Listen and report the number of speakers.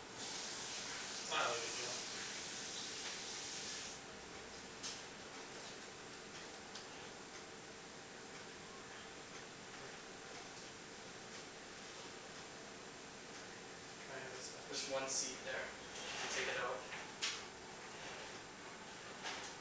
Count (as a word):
two